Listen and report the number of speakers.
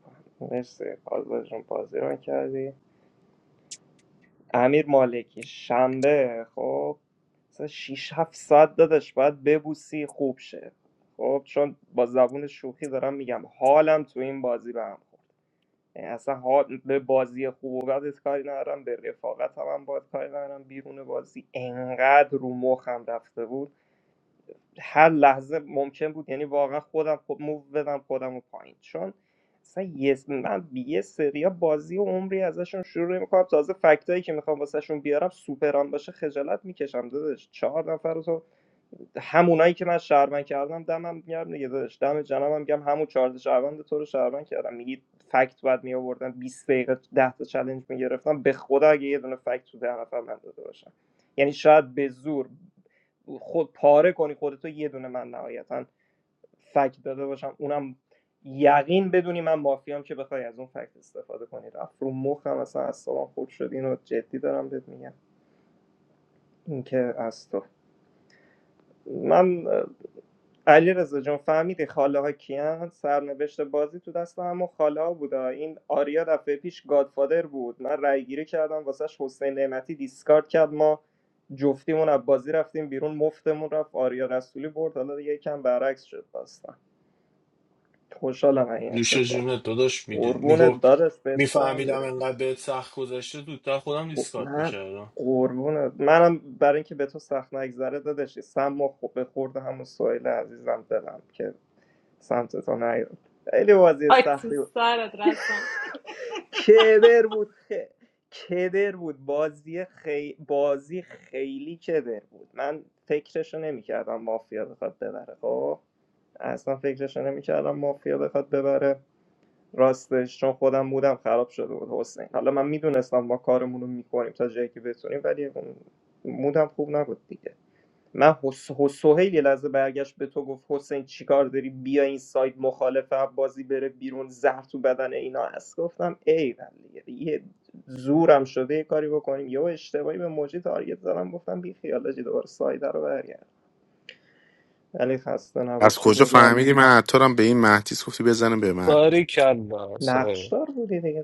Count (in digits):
5